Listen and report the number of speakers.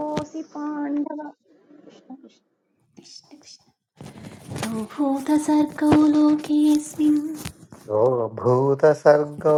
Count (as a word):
three